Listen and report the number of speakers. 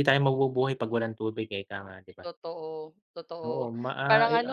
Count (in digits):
2